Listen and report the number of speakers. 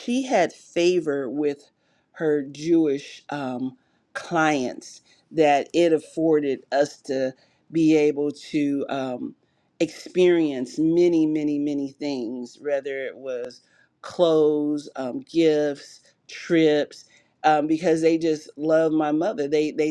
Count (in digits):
1